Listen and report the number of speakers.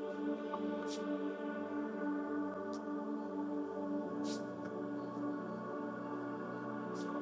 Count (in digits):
0